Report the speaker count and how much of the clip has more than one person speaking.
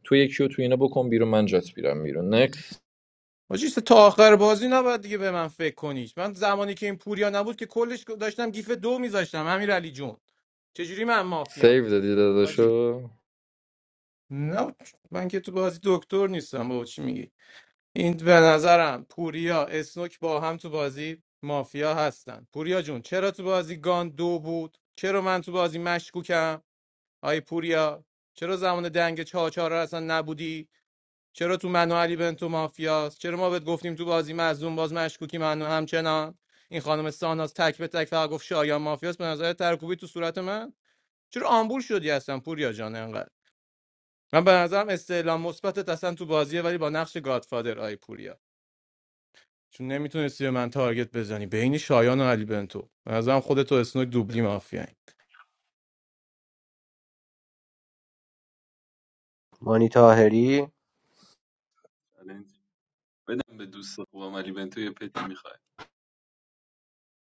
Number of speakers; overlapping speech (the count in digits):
4, about 1%